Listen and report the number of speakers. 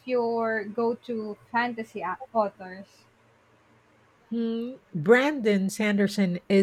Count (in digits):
2